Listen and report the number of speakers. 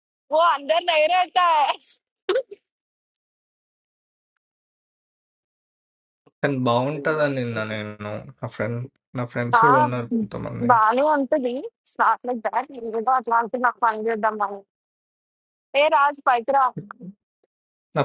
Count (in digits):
2